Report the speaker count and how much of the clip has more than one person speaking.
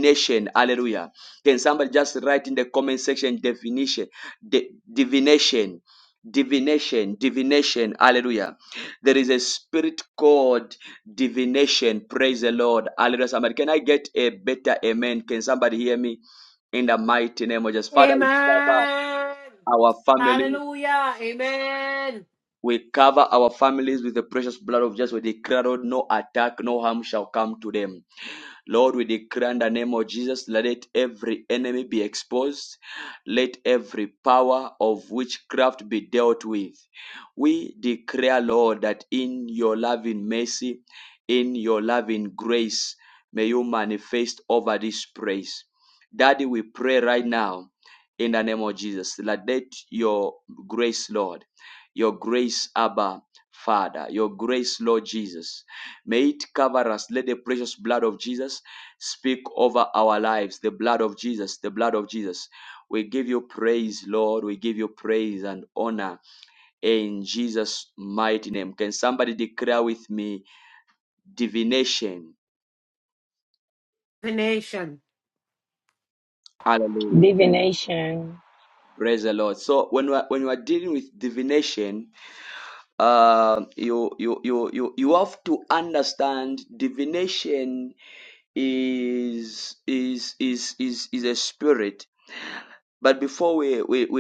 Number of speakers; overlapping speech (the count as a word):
three, about 2%